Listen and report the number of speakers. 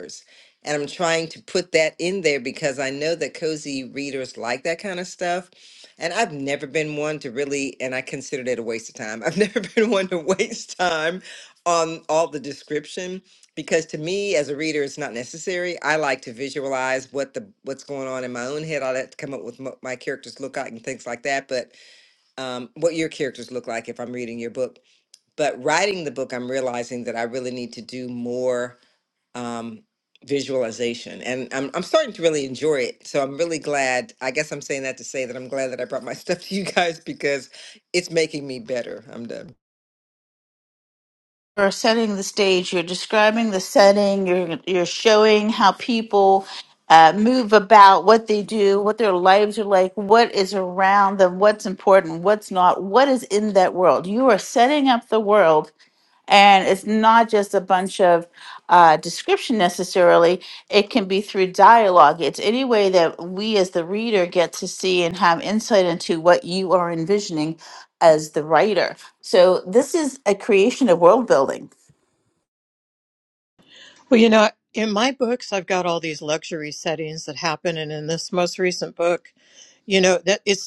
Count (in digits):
3